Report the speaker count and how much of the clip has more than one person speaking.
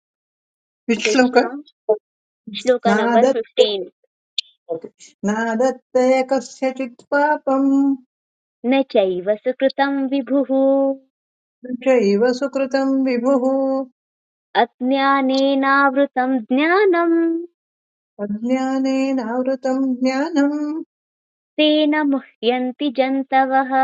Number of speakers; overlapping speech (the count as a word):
two, about 5%